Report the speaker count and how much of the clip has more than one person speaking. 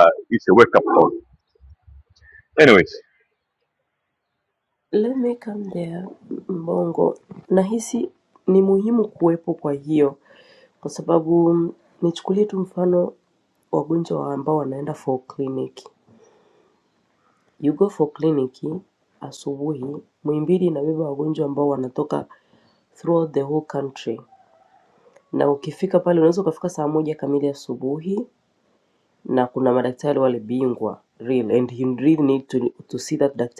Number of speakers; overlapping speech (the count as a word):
two, no overlap